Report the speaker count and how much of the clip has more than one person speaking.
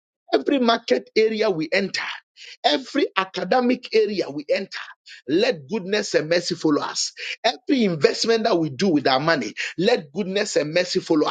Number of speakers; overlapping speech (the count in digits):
1, no overlap